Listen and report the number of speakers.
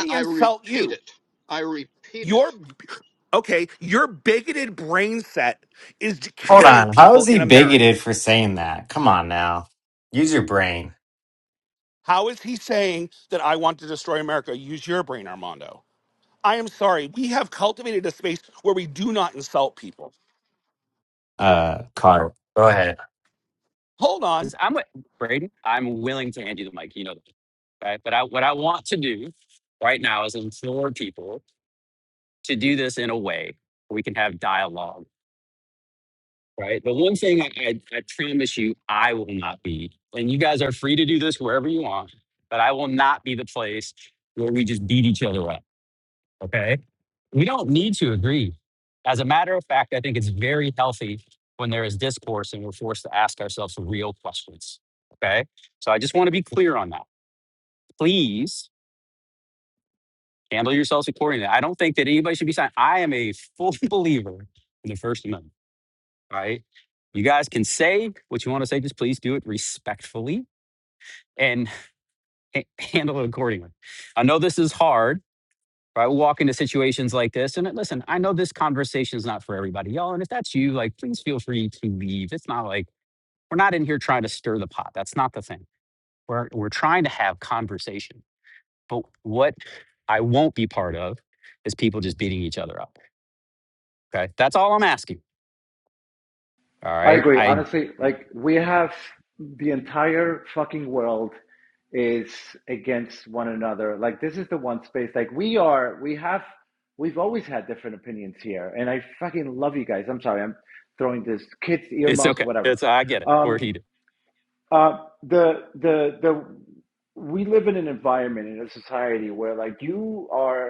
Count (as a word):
five